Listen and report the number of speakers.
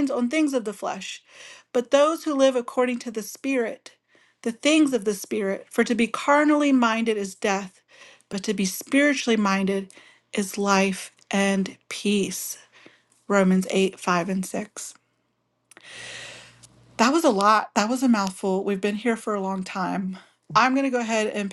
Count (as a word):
one